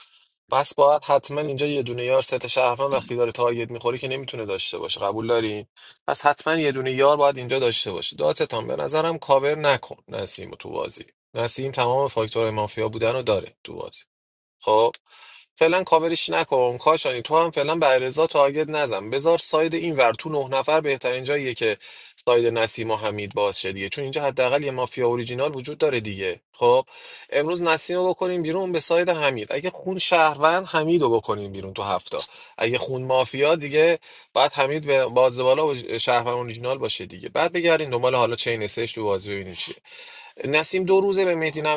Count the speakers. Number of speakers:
one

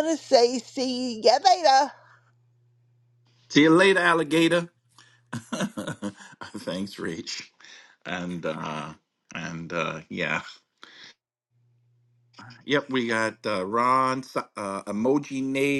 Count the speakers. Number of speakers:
two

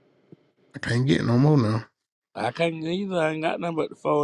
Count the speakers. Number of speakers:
two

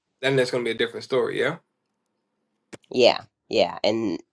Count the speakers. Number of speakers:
two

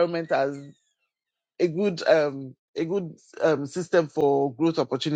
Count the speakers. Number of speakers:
one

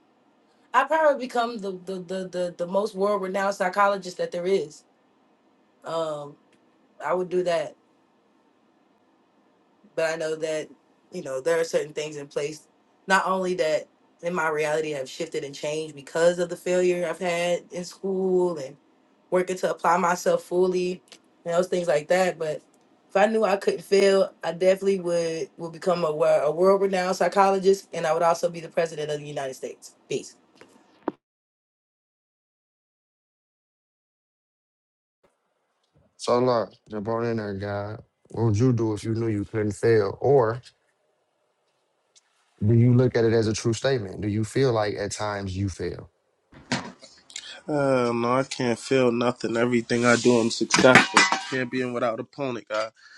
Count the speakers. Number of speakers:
three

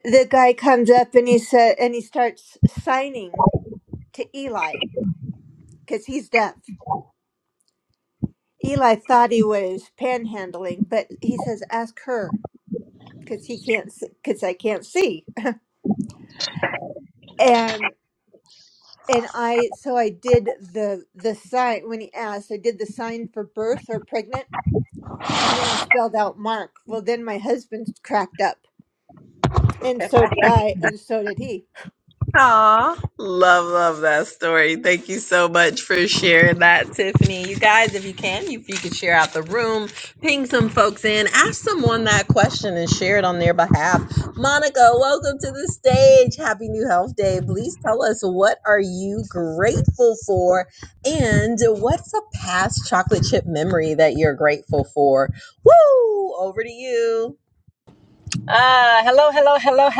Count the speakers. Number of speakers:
three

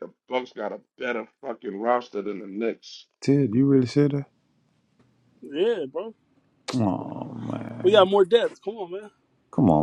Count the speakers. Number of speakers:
three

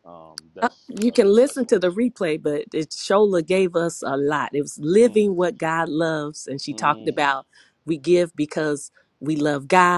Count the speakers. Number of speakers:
two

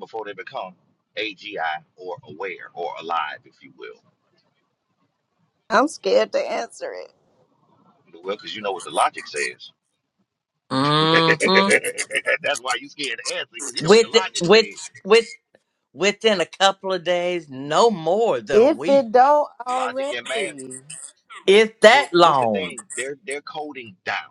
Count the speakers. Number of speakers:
three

